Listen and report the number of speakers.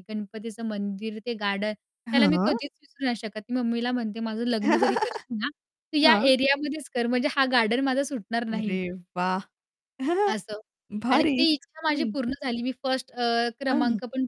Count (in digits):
2